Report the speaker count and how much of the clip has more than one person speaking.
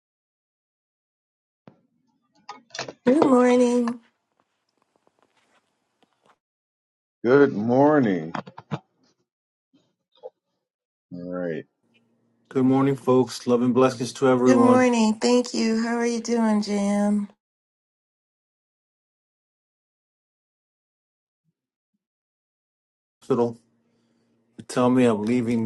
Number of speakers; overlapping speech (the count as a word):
three, about 2%